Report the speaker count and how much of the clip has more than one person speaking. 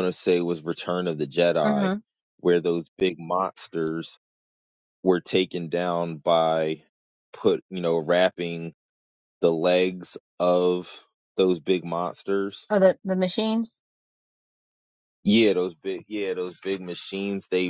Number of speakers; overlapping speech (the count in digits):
2, about 1%